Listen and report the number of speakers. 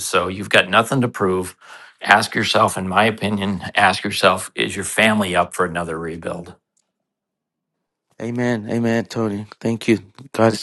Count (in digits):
2